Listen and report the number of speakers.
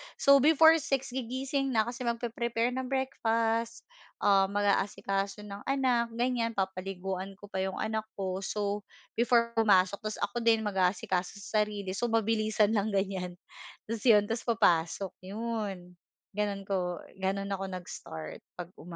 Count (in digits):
1